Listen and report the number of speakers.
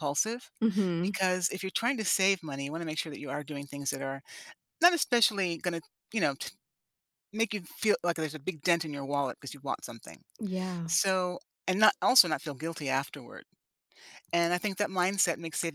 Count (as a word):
two